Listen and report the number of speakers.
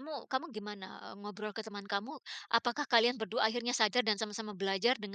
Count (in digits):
1